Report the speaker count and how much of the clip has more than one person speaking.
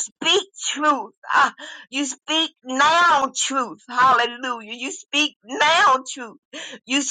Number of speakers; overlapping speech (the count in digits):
1, no overlap